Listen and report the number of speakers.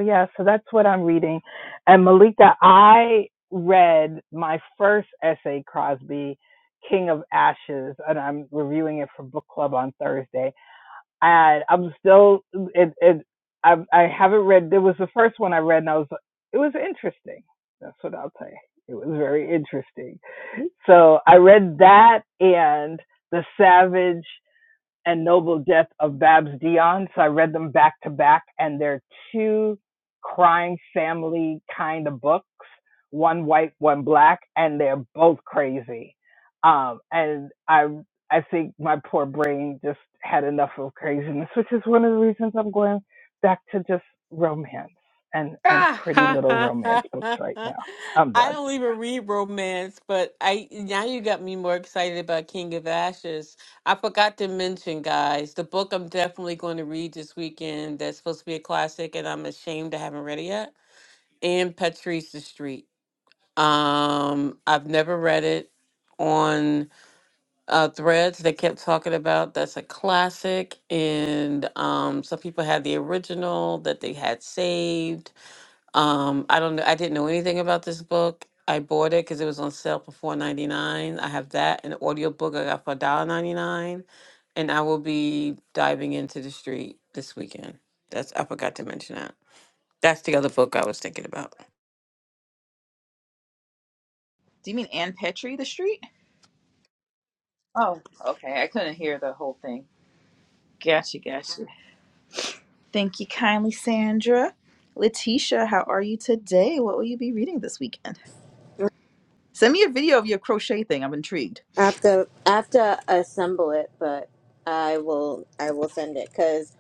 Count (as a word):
four